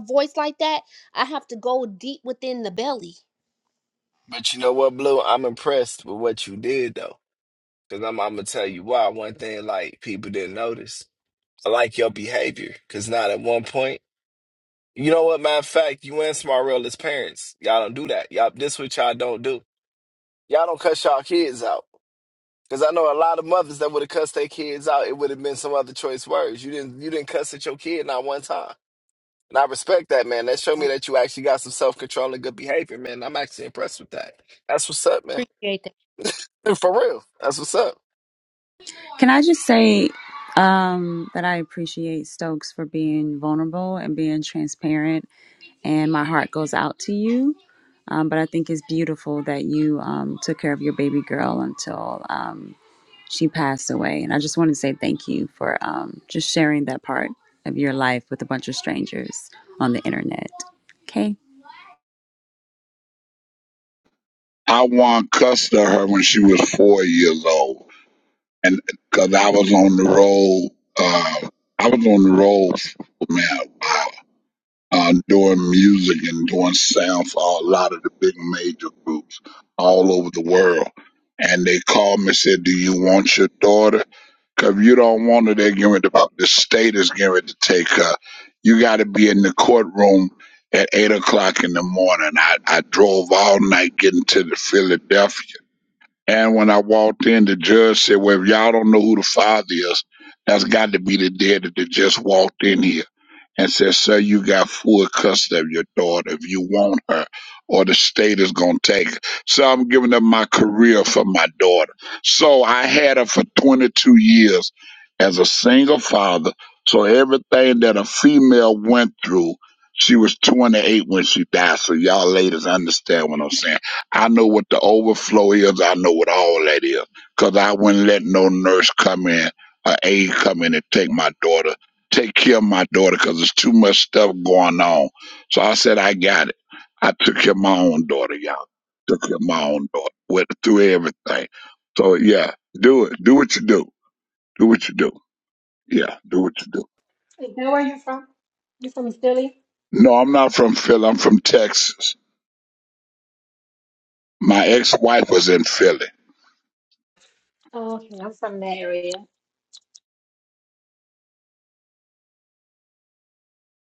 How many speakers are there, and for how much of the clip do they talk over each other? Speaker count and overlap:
5, under 1%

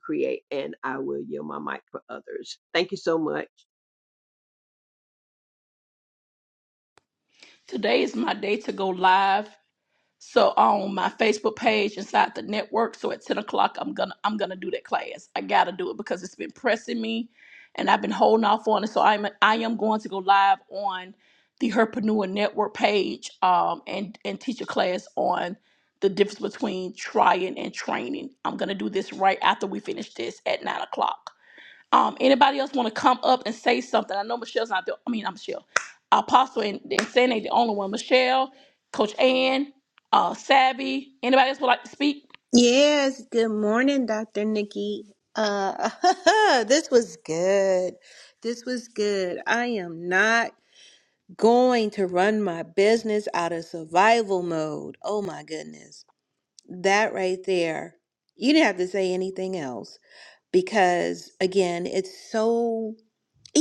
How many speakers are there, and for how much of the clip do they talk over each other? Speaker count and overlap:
3, no overlap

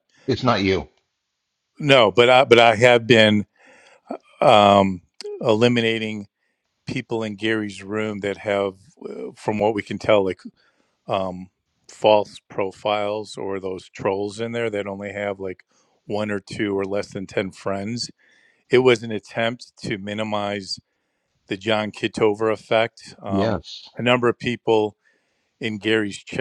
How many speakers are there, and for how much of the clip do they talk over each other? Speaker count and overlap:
2, about 1%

